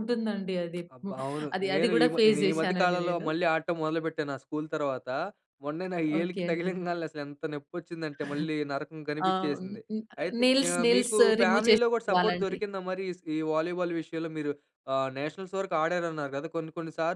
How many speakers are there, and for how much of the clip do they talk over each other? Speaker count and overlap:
two, about 26%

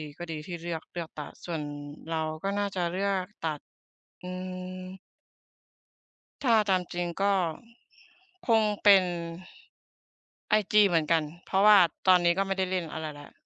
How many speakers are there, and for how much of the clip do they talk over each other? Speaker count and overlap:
one, no overlap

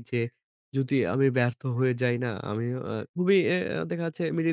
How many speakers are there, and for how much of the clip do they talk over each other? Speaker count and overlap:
one, no overlap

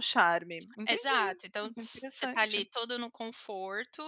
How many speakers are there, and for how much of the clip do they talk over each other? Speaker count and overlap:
two, about 24%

